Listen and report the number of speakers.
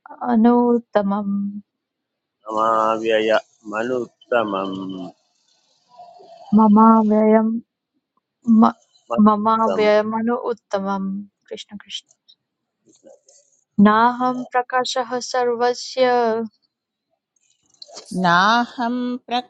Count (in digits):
3